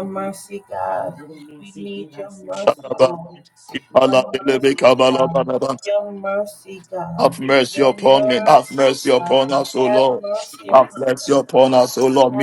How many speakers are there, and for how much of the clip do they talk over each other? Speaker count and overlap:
two, about 43%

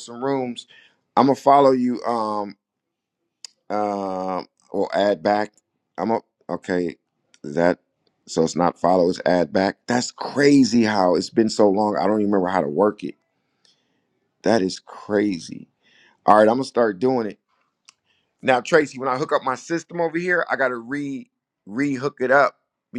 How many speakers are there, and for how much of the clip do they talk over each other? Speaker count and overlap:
one, no overlap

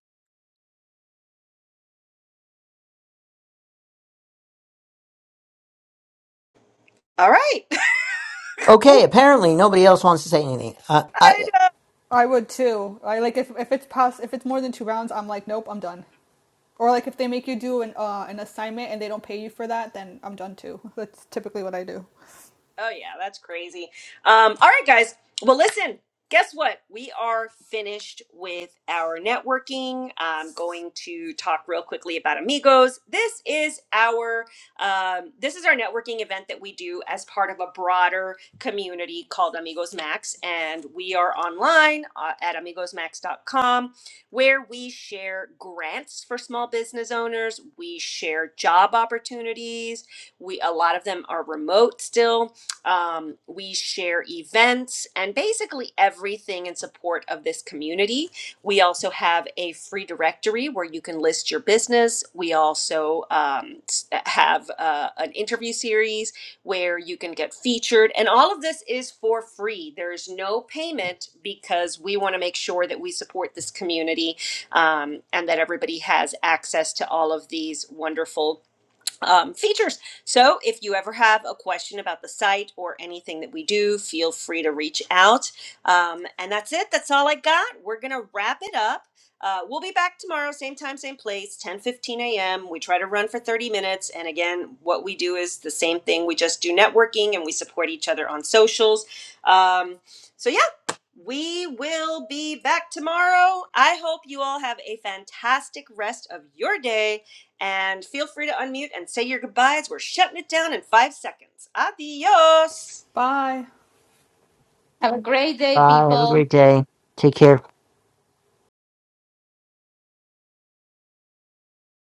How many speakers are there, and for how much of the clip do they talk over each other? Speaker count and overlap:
four, about 1%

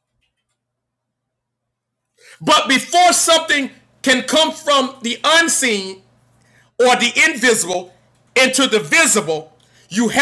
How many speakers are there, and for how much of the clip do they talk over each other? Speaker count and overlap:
one, no overlap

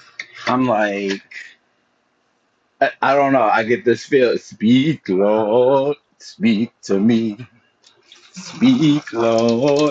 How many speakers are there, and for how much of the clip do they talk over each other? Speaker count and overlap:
one, no overlap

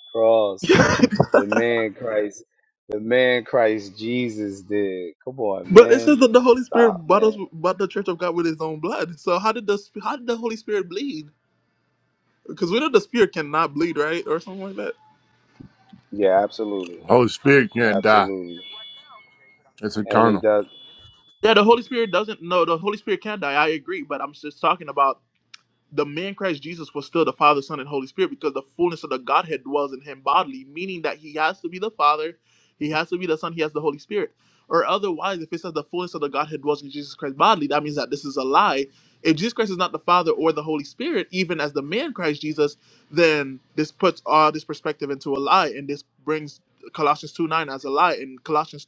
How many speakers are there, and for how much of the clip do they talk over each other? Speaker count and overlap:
three, about 4%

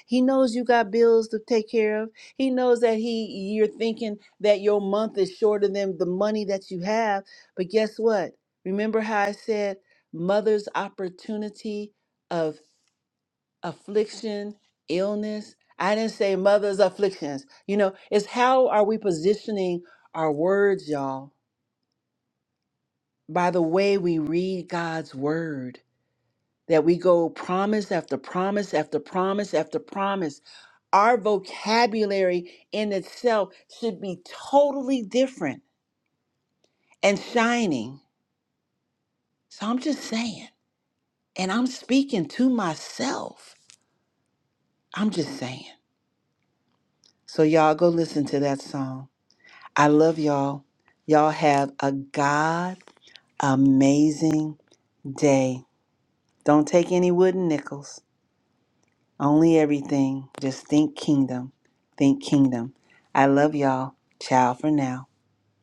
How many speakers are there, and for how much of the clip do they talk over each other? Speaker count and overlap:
one, no overlap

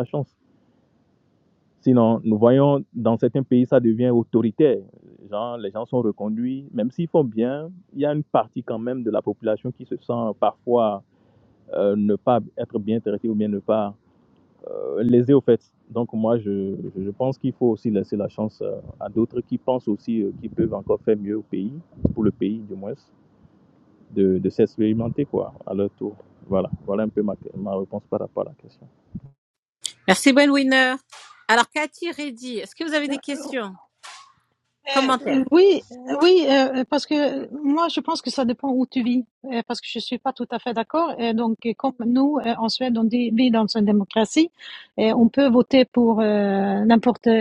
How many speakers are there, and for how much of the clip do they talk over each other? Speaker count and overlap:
three, about 1%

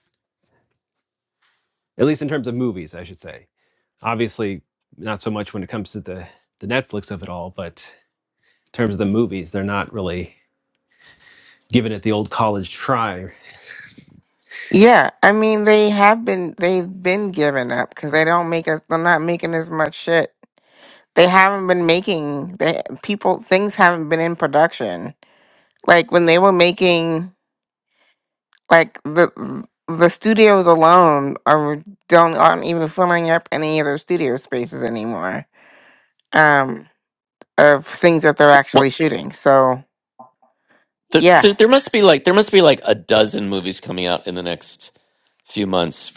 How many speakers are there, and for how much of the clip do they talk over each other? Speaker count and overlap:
three, about 1%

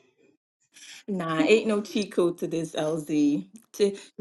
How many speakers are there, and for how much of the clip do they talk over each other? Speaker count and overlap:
one, no overlap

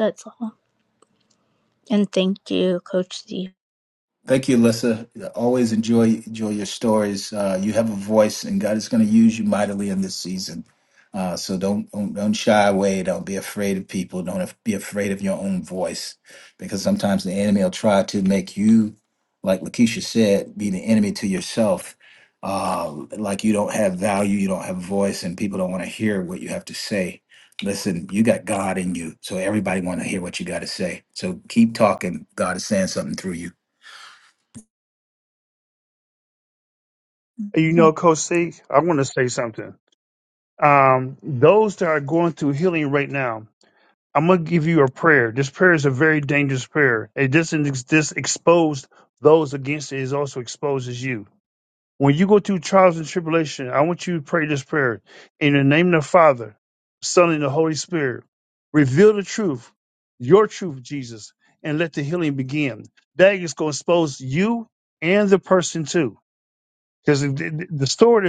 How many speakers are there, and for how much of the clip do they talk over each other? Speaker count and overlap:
three, under 1%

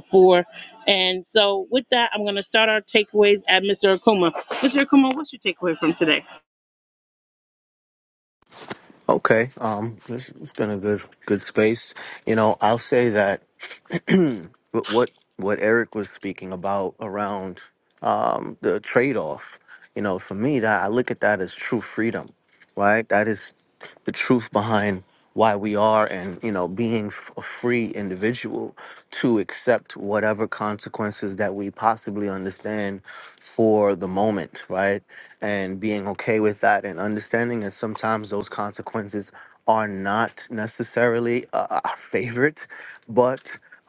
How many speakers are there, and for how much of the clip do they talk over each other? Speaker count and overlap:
two, no overlap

